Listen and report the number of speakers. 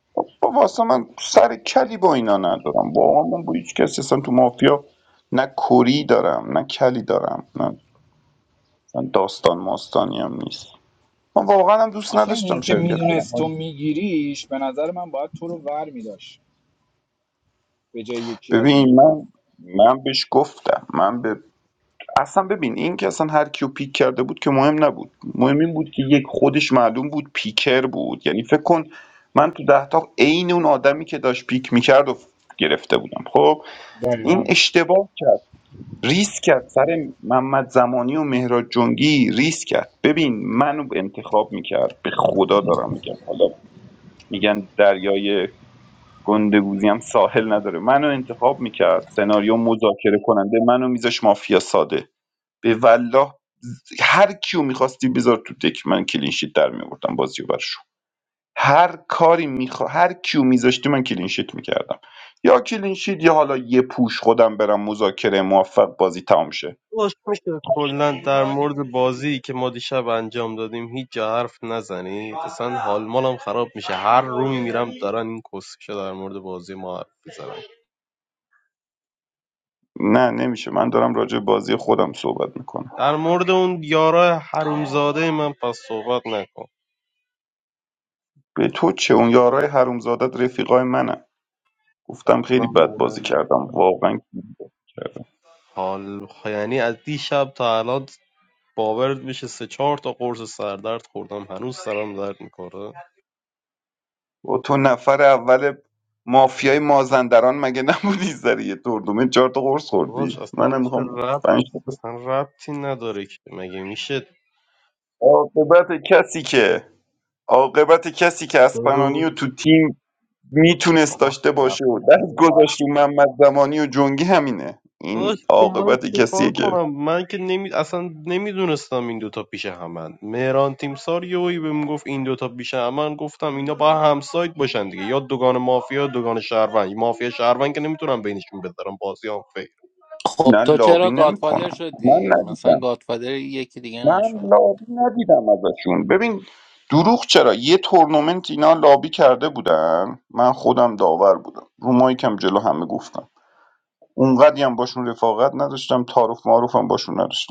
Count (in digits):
4